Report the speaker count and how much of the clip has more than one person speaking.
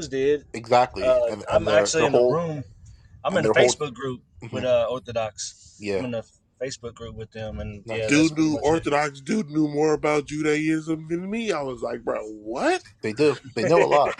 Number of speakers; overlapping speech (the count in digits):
3, about 24%